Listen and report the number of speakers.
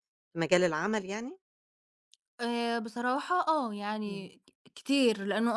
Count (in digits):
2